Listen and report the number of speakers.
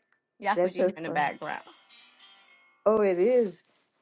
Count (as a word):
two